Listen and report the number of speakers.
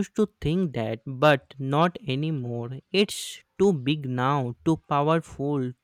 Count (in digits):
1